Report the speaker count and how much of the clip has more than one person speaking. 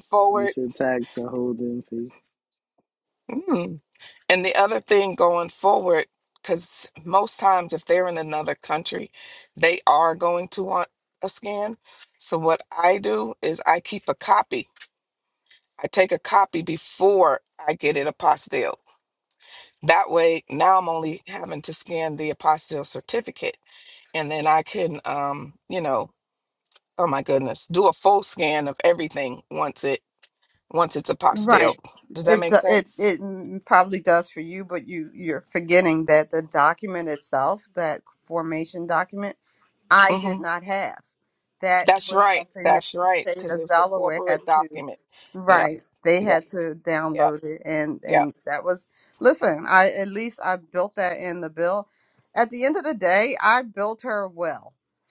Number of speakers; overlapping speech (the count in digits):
3, about 9%